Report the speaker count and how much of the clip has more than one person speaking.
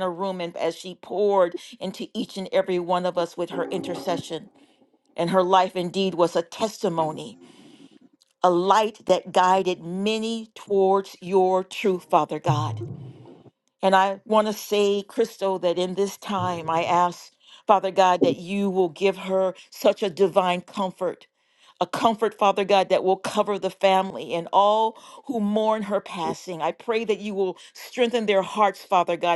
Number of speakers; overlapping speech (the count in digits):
1, no overlap